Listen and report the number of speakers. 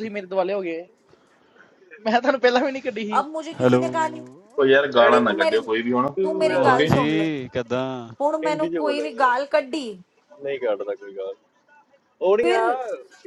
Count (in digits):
5